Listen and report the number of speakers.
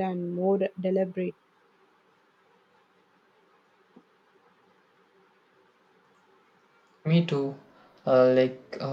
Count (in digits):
2